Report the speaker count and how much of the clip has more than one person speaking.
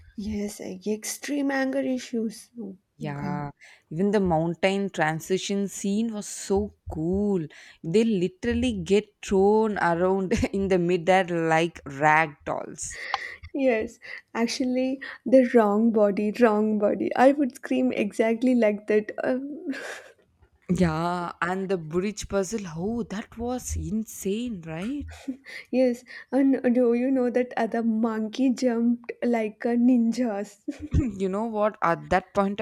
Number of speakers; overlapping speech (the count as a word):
two, about 1%